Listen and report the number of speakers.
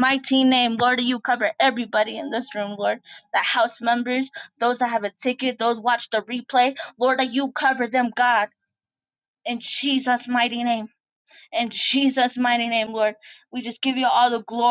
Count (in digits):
1